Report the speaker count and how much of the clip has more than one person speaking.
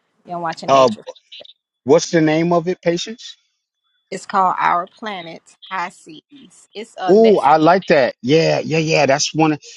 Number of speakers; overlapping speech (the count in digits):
2, about 7%